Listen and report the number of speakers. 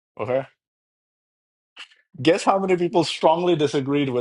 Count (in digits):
1